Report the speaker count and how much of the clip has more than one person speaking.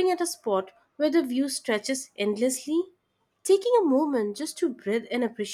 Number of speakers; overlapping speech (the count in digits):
1, no overlap